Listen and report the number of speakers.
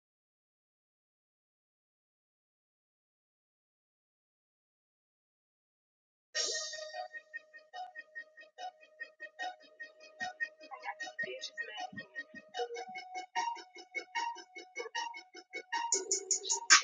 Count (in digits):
0